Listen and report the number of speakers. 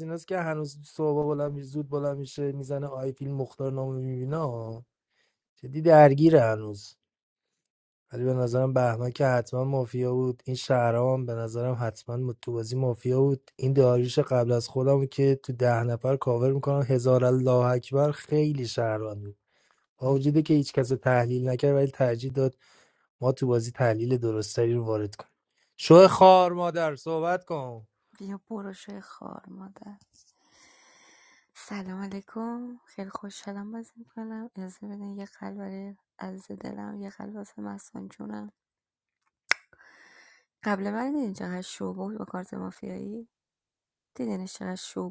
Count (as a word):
two